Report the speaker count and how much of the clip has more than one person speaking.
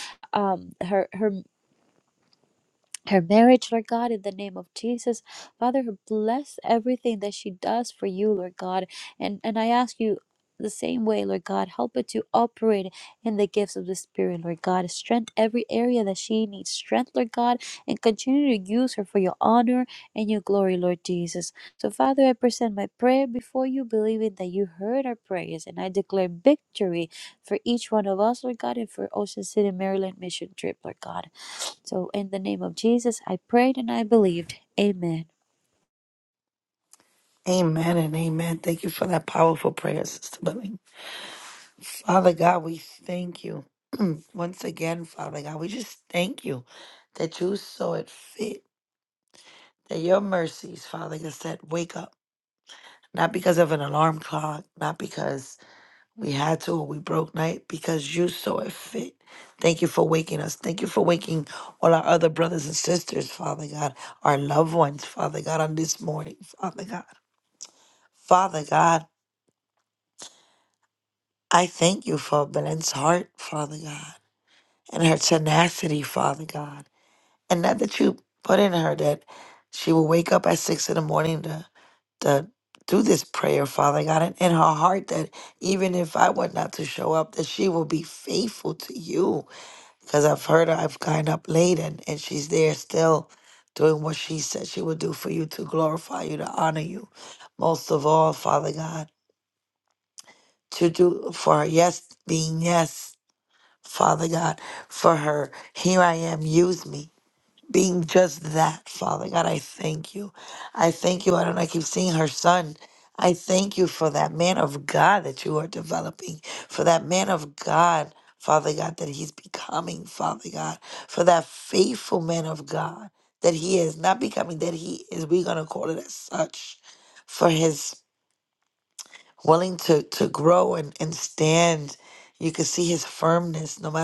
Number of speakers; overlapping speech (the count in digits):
2, no overlap